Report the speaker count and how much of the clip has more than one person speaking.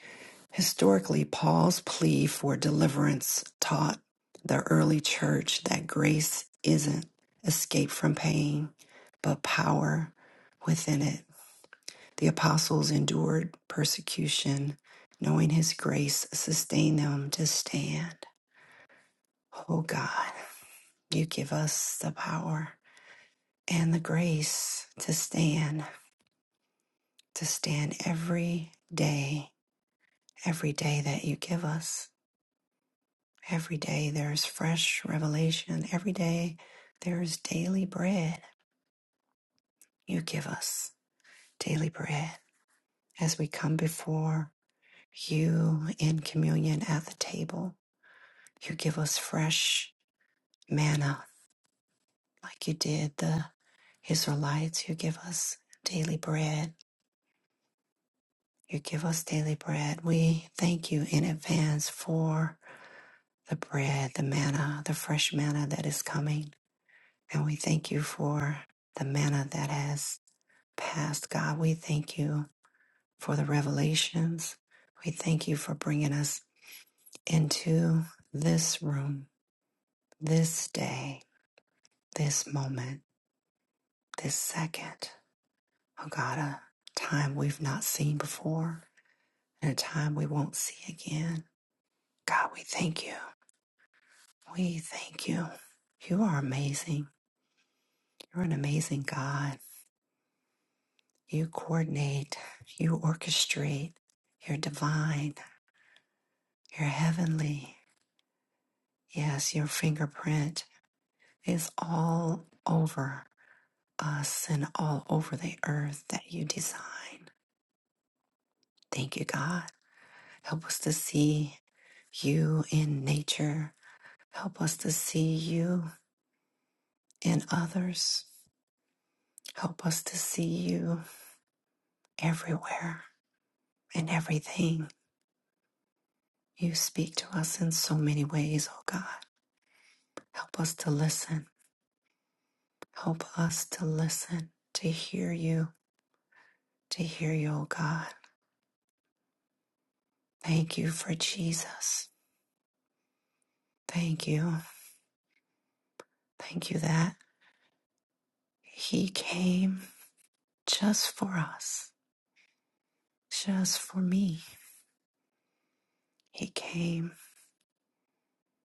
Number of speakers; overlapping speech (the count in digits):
1, no overlap